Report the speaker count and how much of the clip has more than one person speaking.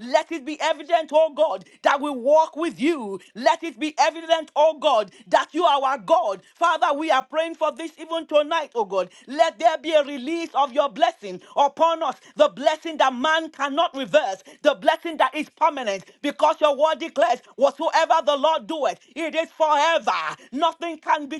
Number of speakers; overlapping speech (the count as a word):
one, no overlap